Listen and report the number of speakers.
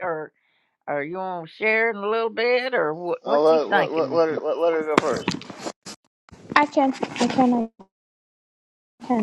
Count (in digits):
3